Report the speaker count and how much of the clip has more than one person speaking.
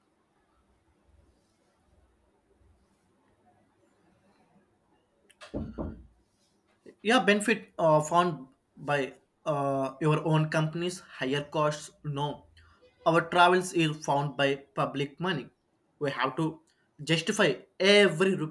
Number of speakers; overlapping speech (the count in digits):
1, no overlap